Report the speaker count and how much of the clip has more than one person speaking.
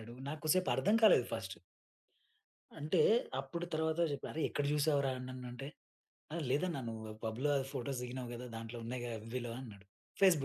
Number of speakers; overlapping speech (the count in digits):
1, no overlap